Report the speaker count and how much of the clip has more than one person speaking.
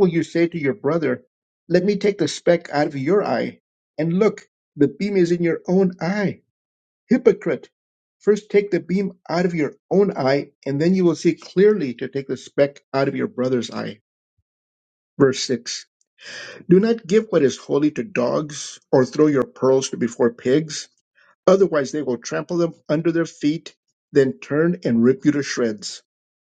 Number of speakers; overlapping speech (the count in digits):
1, no overlap